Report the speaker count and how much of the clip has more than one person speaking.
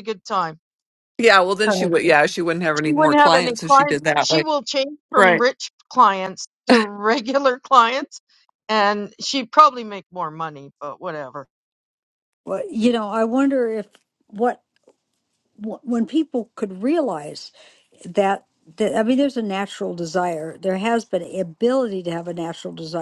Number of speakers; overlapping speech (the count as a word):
three, about 10%